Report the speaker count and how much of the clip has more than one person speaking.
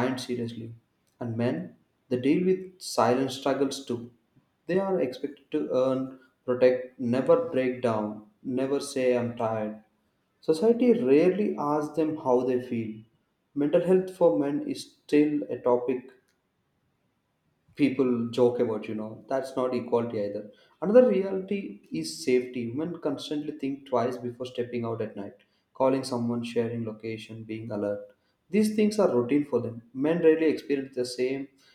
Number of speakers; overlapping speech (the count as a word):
one, no overlap